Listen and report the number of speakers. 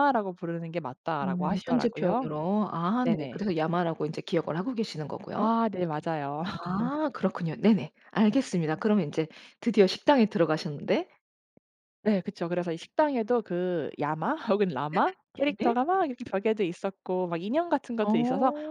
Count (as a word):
two